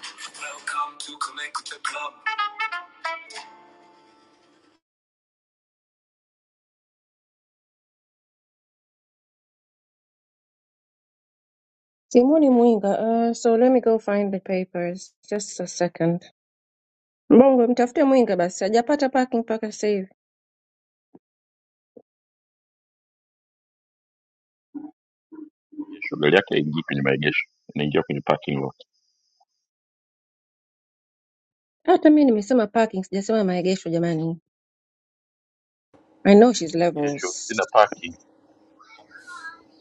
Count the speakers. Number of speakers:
three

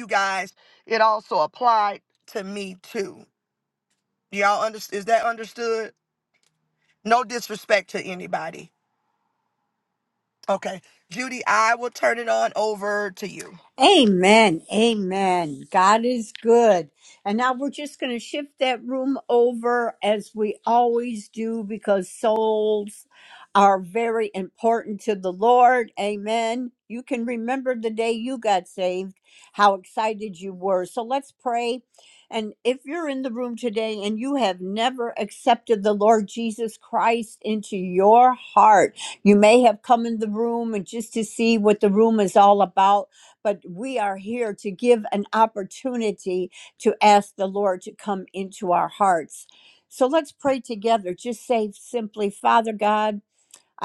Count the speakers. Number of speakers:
two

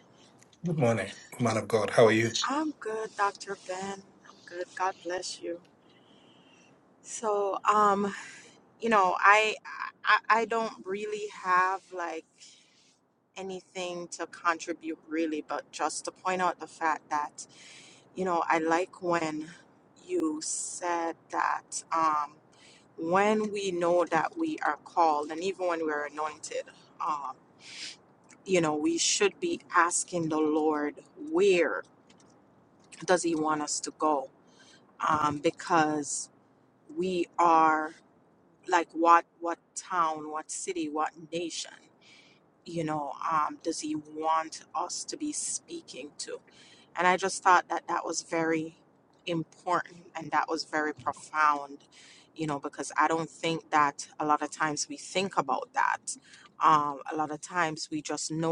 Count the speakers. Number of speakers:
two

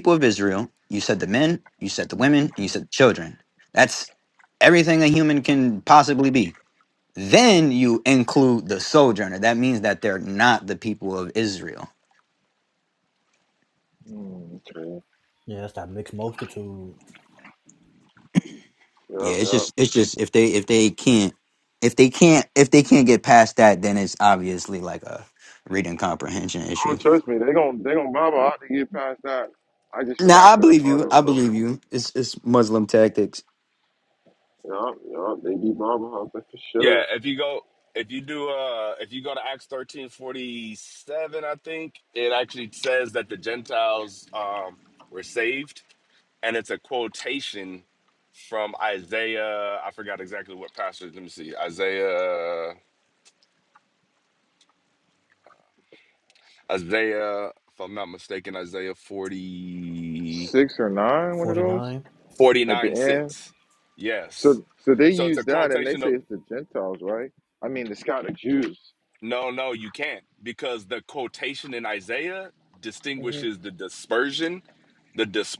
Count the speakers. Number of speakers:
four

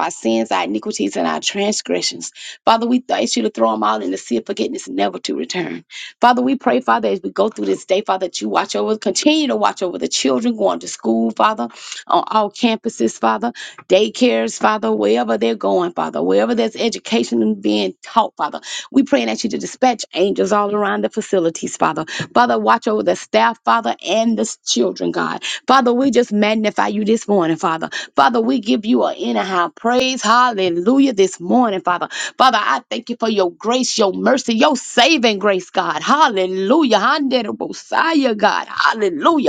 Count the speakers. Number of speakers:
one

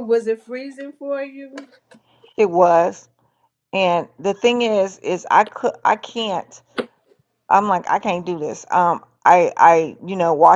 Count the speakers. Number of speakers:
two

